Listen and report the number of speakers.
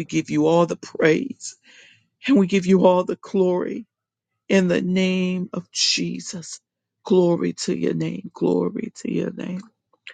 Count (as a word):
one